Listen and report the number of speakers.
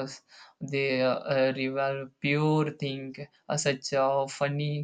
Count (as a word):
one